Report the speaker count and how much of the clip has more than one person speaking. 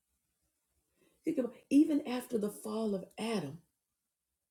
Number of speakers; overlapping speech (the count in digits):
1, no overlap